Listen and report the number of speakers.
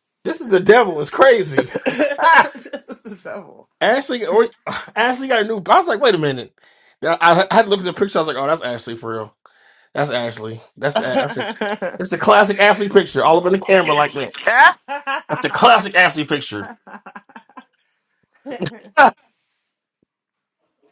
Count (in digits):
2